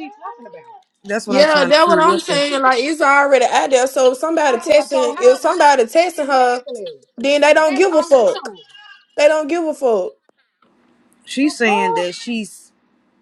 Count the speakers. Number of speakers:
3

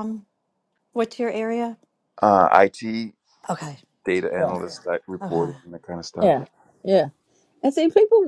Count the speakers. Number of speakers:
3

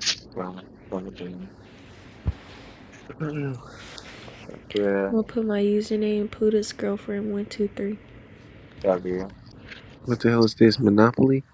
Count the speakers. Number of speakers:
3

